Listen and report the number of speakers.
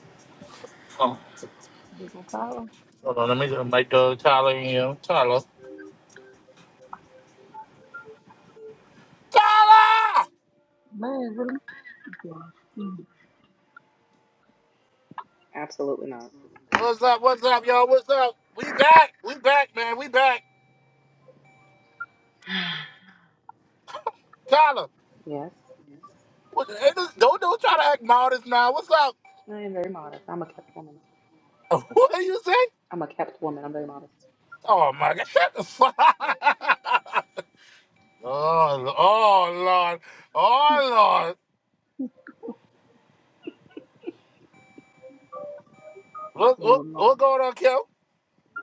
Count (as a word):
three